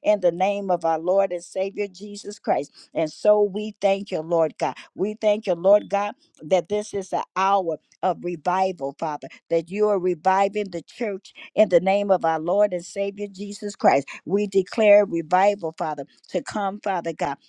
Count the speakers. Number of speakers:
1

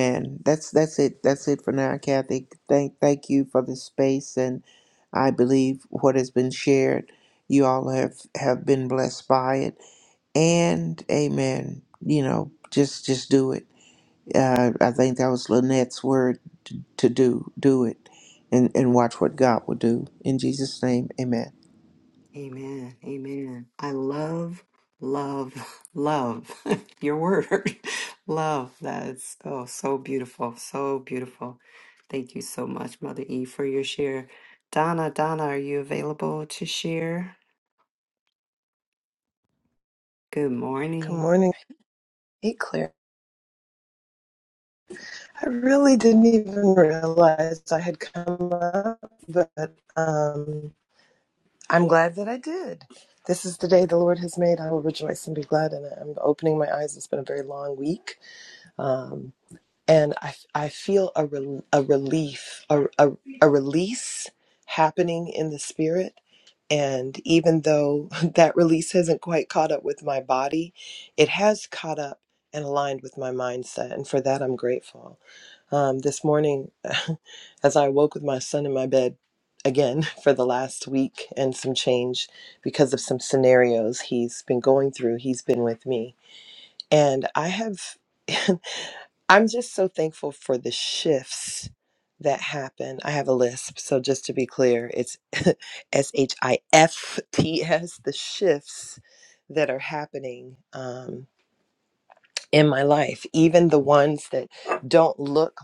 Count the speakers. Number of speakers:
3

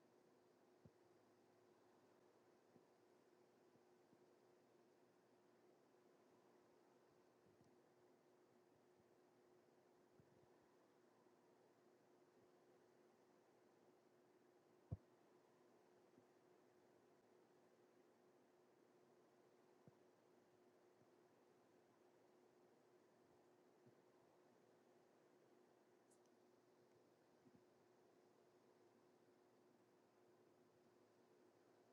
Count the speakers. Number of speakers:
0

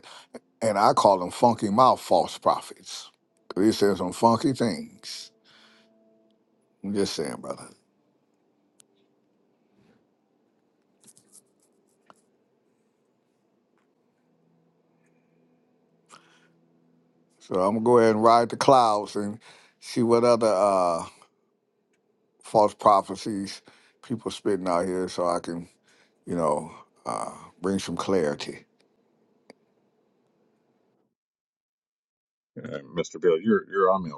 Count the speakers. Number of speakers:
2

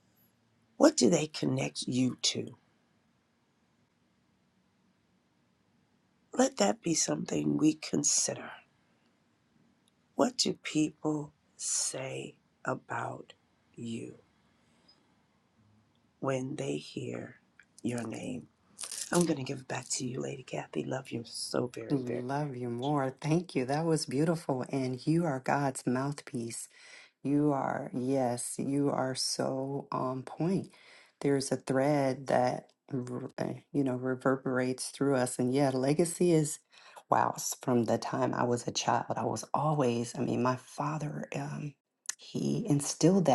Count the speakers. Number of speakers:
2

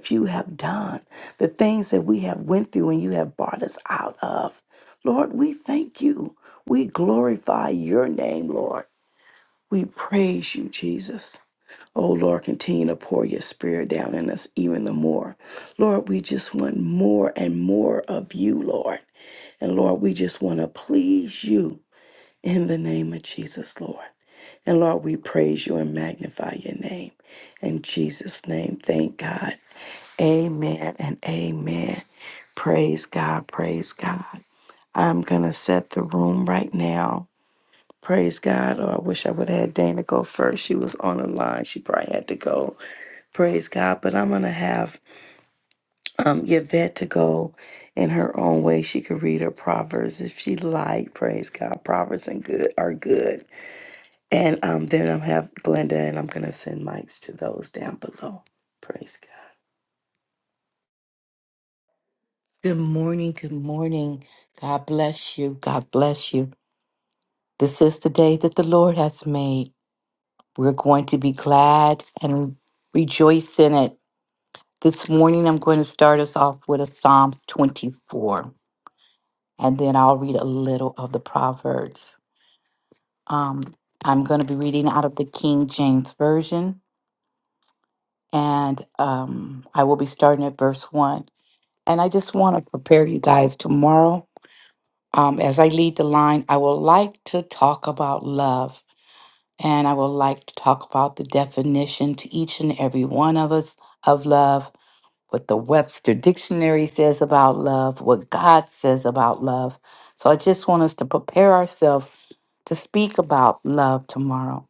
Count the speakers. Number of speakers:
2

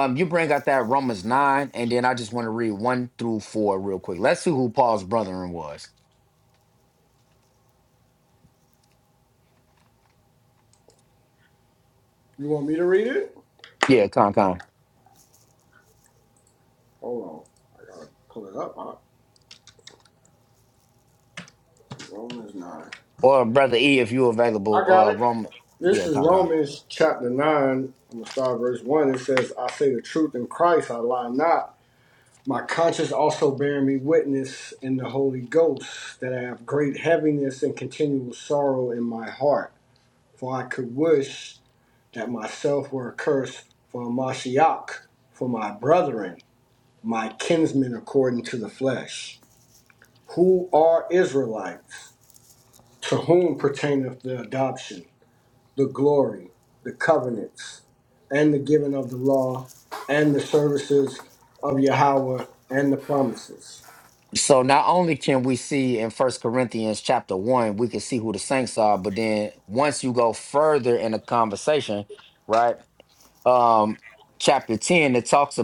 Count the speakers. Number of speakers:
2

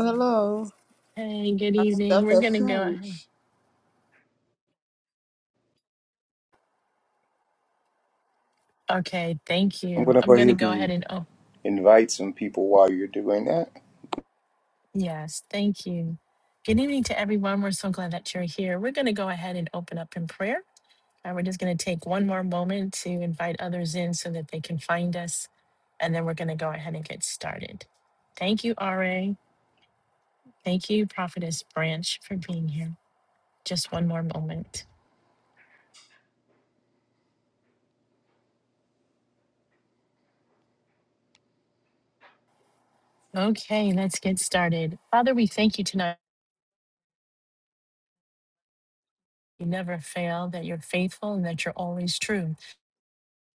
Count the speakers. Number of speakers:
3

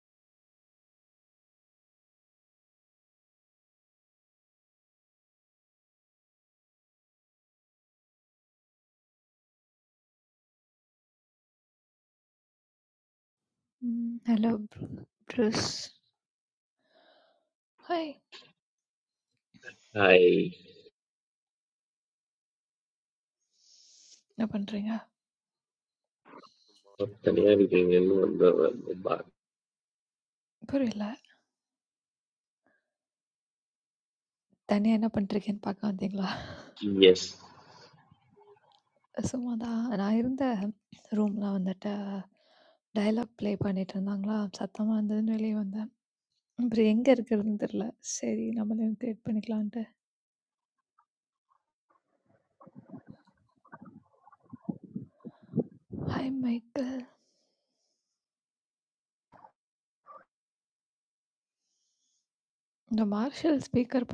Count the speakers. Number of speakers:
2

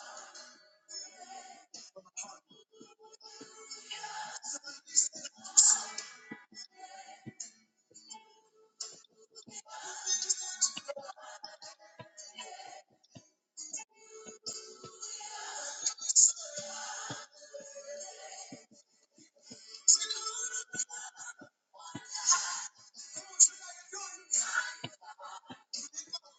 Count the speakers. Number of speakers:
0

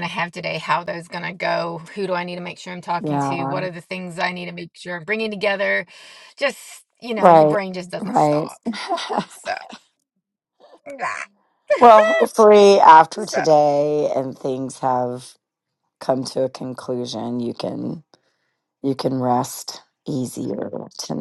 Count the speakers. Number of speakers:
2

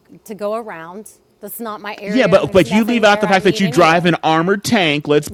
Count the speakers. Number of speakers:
2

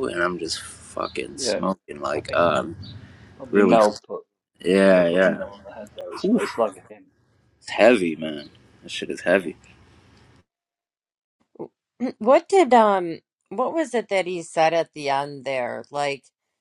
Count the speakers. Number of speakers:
3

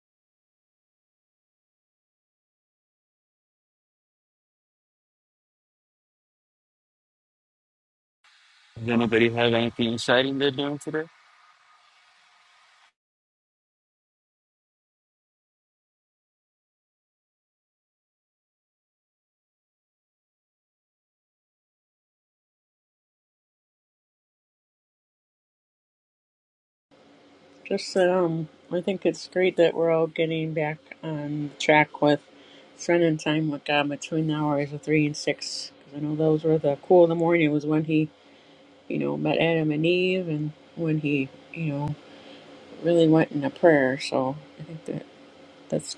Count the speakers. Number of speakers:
2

